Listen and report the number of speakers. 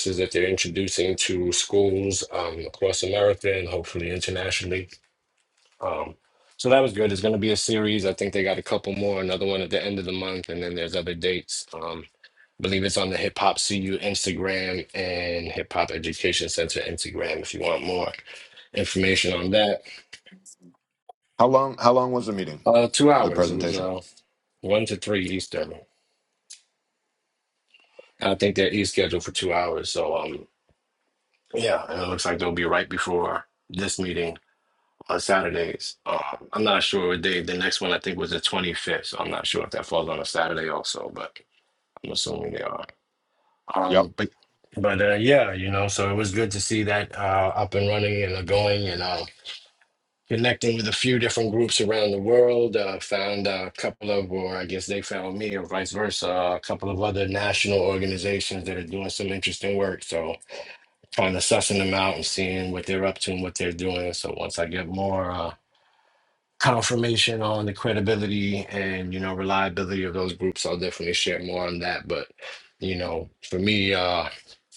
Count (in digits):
2